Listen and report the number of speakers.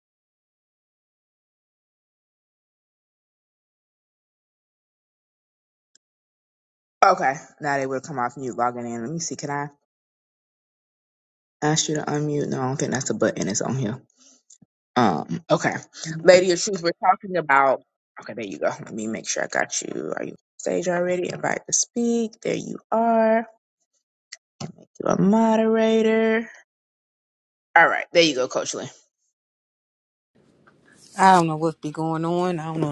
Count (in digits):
2